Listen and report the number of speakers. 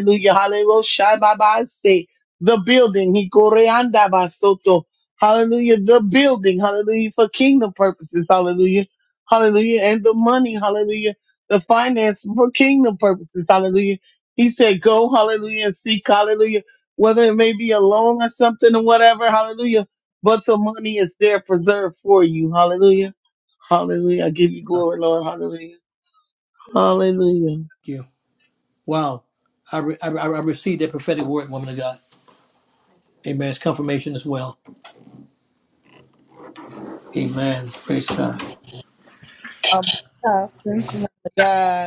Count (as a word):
three